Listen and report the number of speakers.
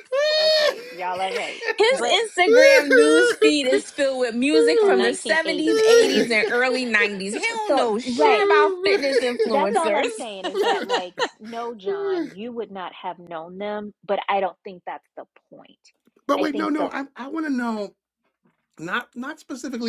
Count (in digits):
3